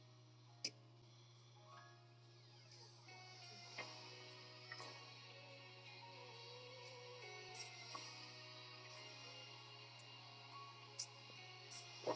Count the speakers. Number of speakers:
0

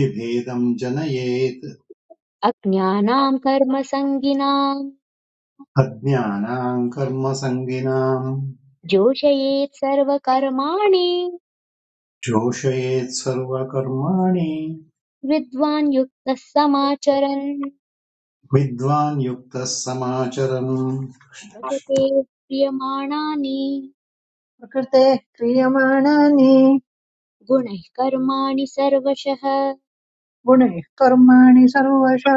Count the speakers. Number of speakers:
3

